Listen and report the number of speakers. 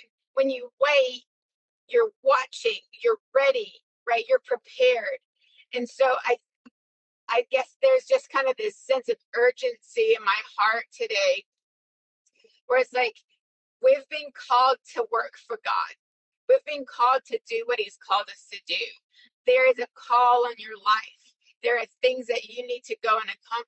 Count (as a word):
one